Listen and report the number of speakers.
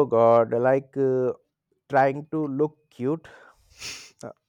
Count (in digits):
1